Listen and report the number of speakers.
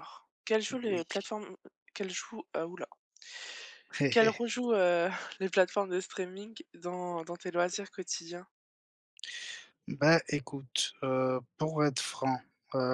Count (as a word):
two